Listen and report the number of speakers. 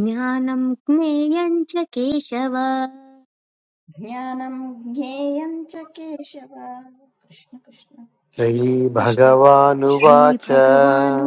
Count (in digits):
3